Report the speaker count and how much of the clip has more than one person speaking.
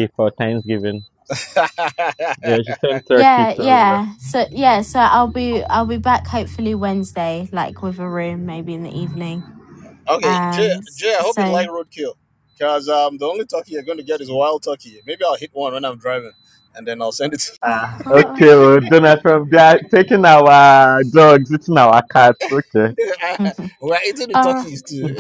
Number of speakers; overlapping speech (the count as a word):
three, about 12%